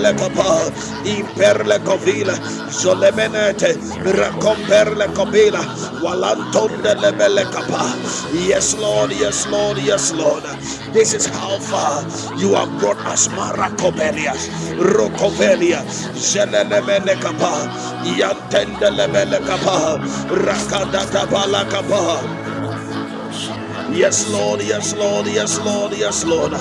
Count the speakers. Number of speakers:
2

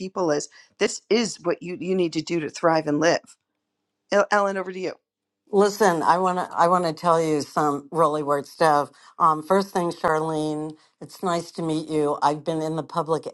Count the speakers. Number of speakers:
2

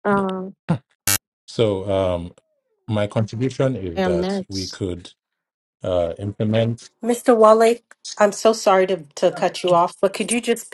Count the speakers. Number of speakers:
3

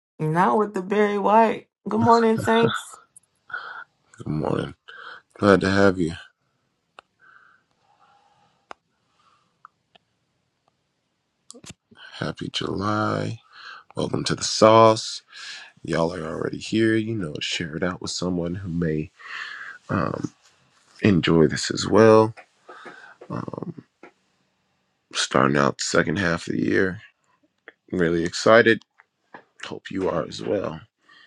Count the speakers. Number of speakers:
2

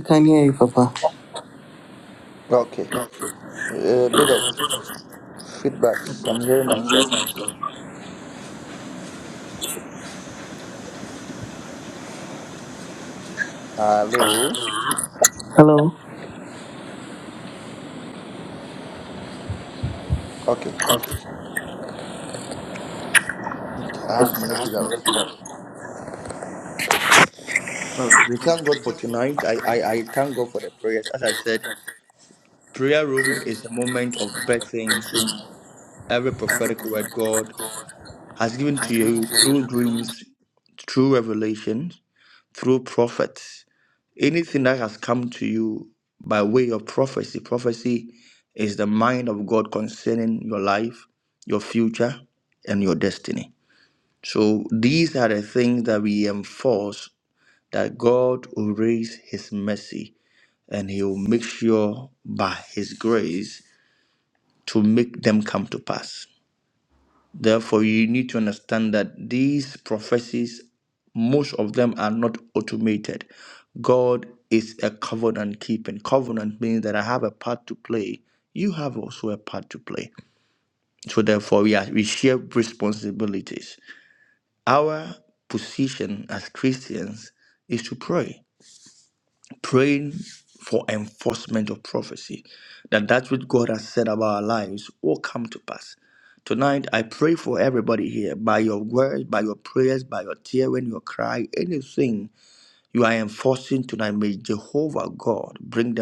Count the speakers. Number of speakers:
2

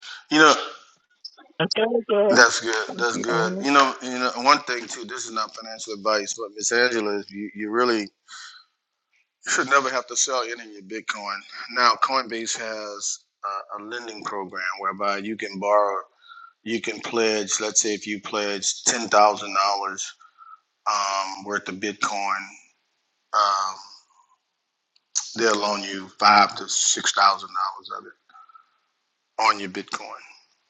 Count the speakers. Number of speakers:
2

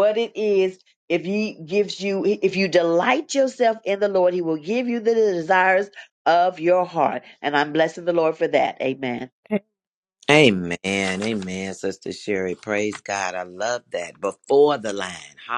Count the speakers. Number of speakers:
2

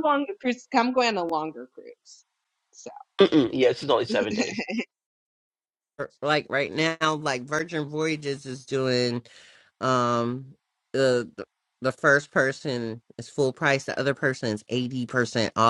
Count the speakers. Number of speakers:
3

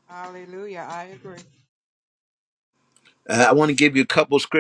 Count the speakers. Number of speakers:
2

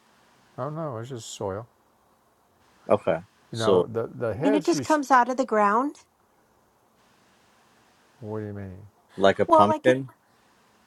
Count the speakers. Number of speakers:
3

